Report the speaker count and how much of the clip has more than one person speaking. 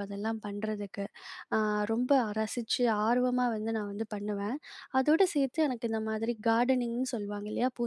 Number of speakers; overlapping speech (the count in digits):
1, no overlap